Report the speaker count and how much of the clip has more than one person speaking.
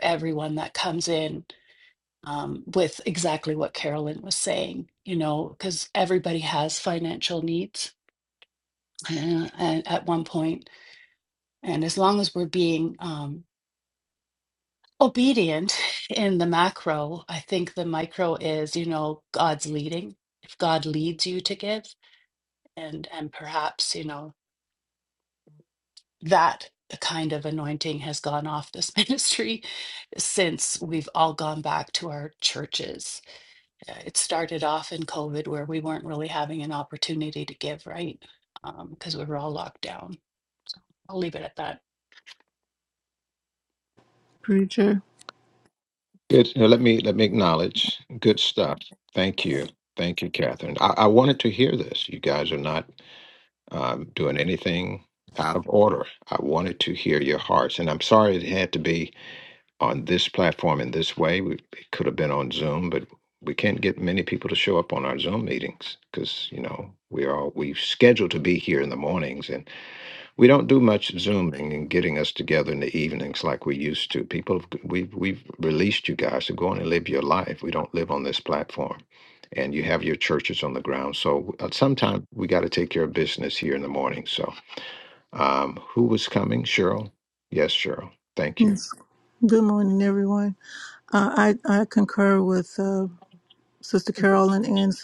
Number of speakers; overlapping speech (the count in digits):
3, under 1%